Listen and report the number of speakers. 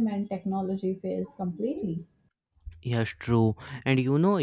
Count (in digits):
2